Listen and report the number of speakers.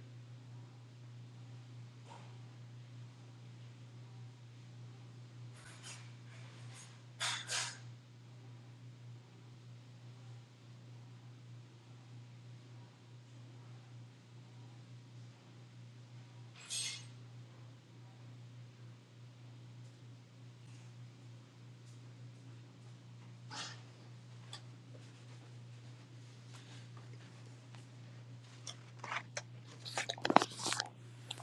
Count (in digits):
0